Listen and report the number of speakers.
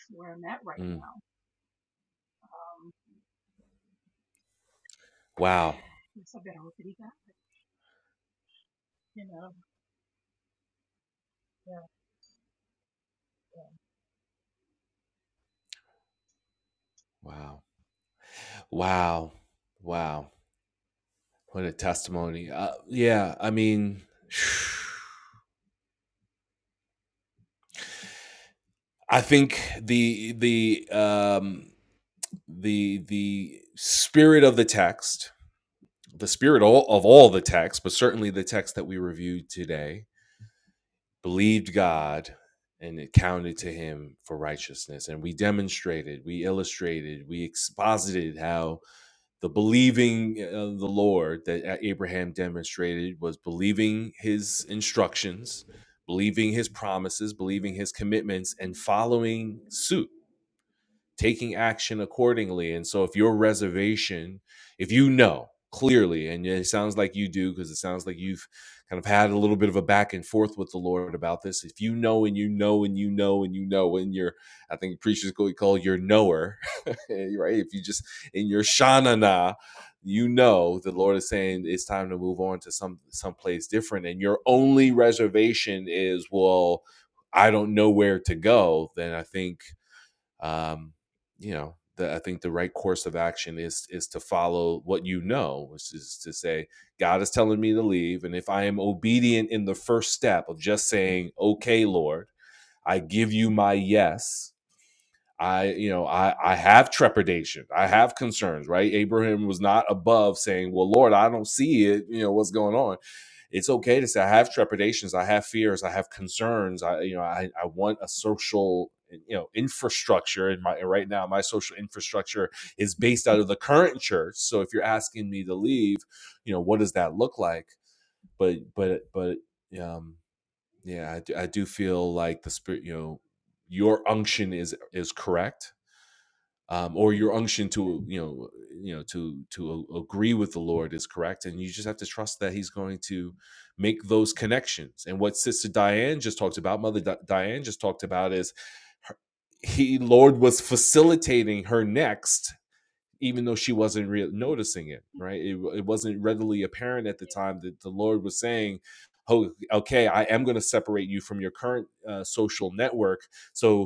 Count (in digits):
2